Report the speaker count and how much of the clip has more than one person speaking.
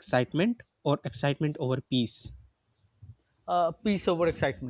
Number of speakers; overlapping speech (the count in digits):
2, no overlap